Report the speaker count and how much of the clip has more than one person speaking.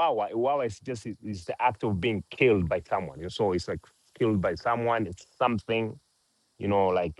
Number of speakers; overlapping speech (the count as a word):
one, no overlap